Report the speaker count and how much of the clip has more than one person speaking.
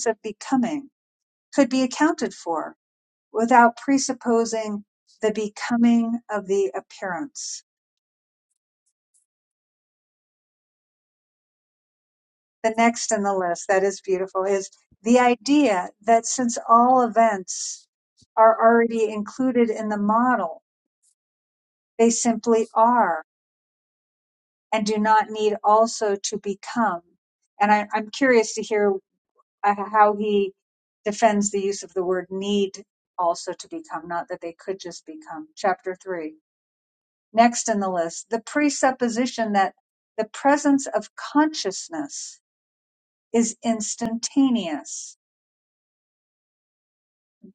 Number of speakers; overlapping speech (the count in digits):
1, no overlap